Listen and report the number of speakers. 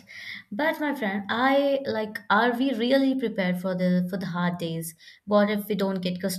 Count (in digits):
1